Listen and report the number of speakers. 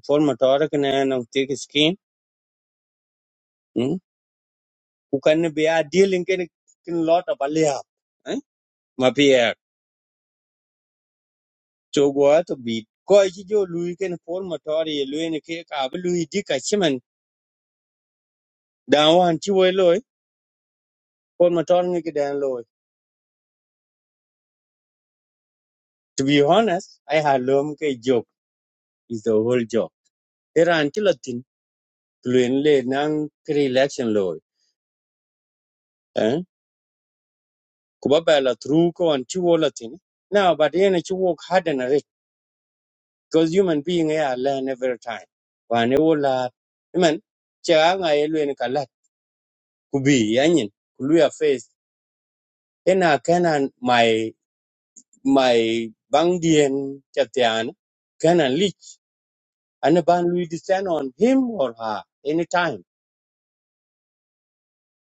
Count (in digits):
1